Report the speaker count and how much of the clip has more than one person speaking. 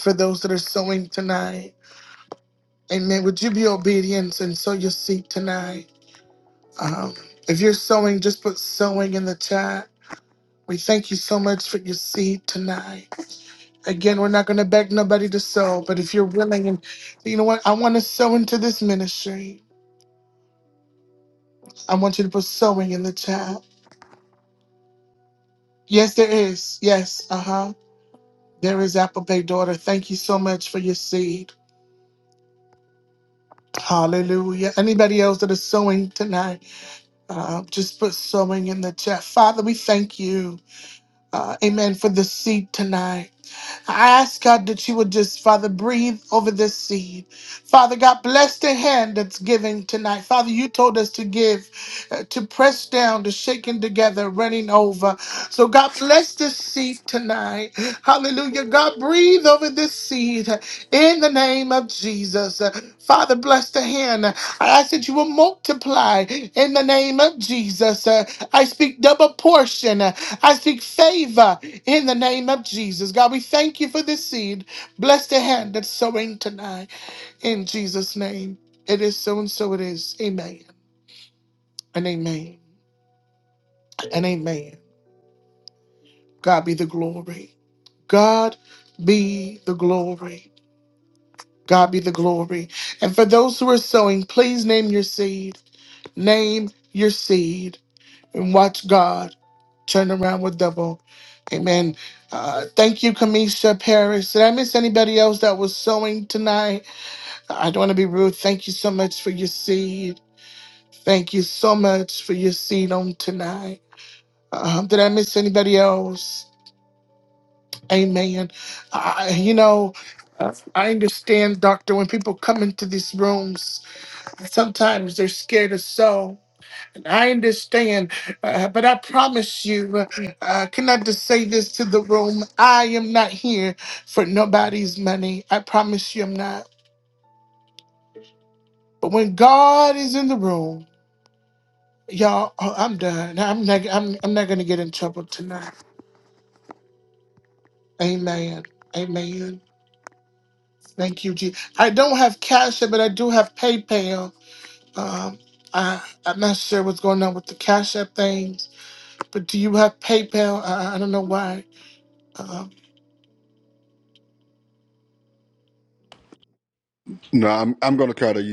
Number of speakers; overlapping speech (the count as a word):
two, no overlap